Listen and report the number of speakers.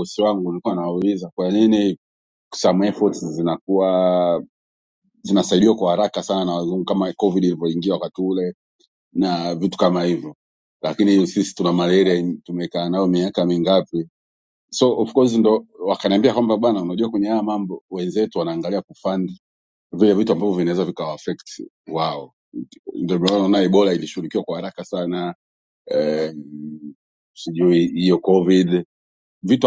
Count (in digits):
1